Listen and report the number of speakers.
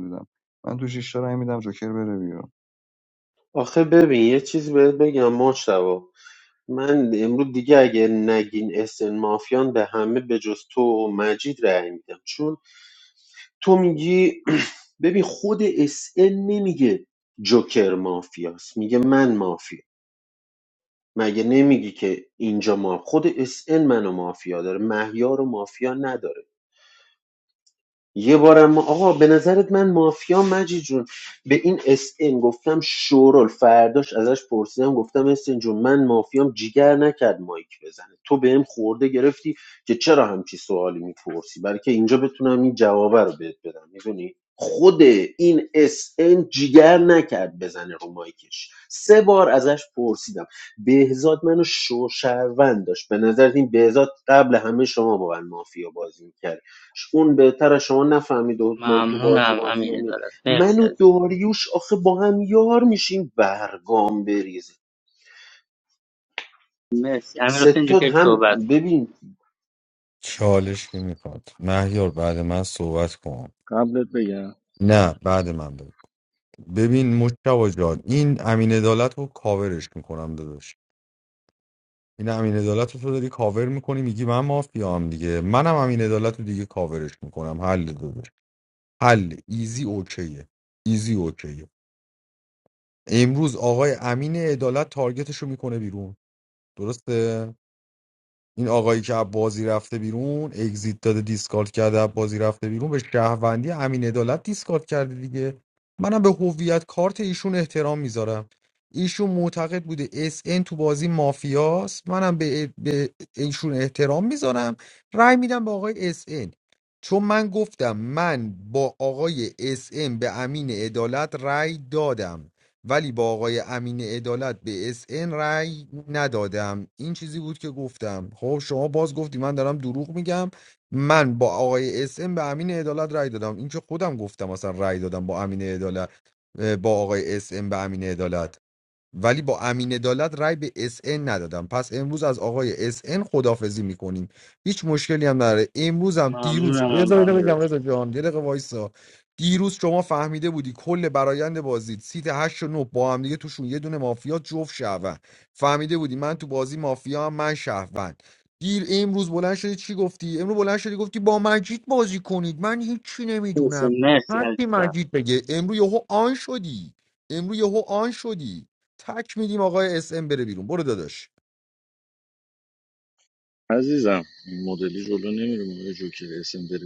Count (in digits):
5